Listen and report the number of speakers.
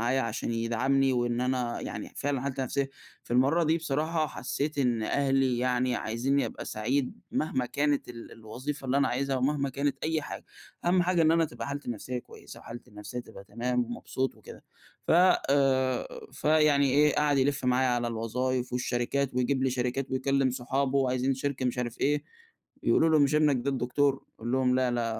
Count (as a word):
one